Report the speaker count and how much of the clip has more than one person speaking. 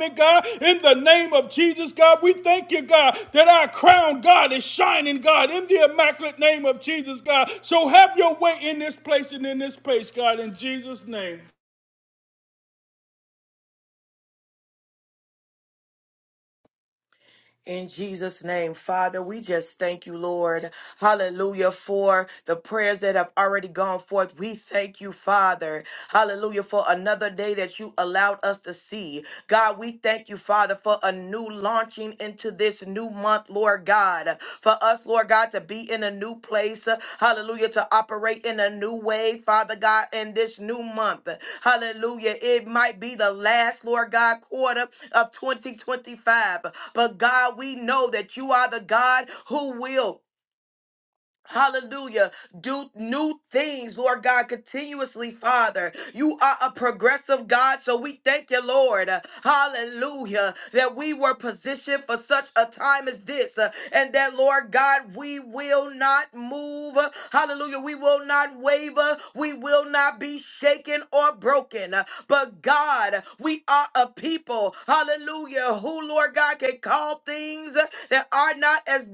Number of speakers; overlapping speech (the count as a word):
two, no overlap